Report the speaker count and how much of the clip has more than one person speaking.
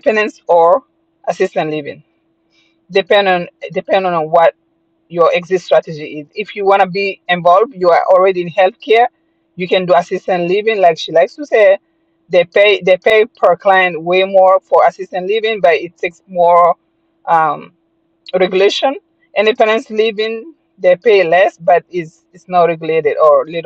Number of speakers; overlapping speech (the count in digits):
1, no overlap